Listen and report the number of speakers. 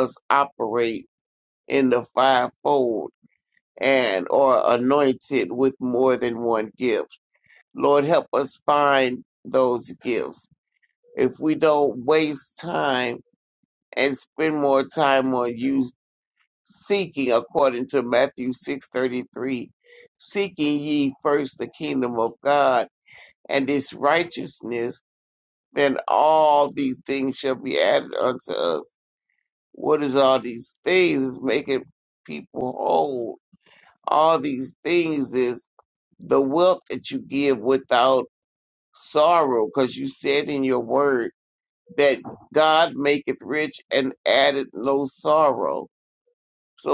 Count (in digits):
1